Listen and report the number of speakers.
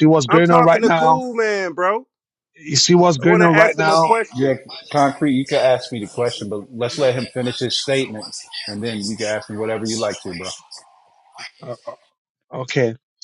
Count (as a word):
three